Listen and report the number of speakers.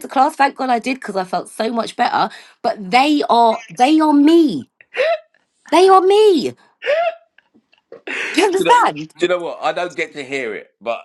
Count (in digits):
2